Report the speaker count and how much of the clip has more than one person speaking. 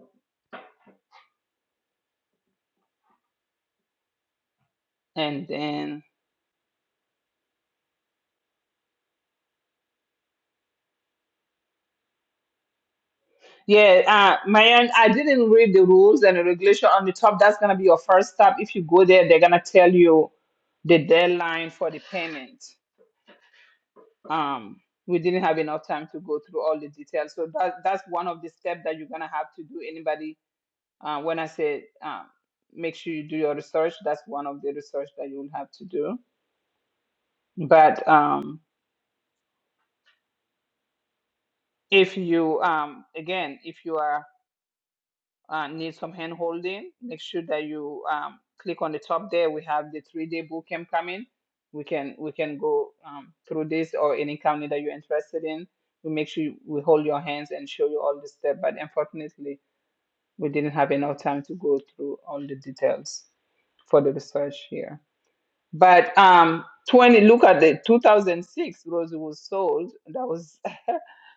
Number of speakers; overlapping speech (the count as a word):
one, no overlap